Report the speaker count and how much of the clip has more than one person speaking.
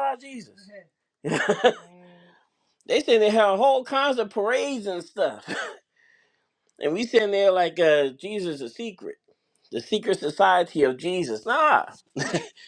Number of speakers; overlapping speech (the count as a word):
one, no overlap